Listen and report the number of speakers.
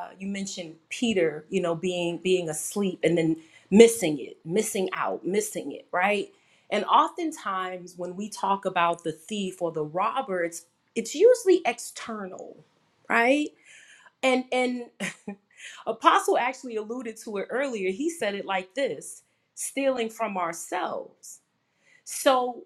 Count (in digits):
1